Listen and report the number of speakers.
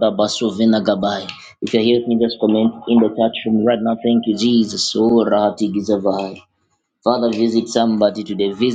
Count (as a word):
one